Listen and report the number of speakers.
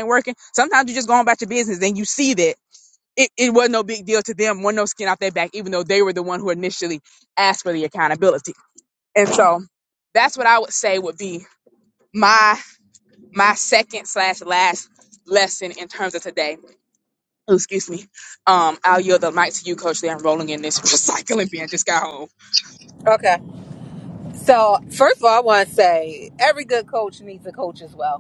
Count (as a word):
two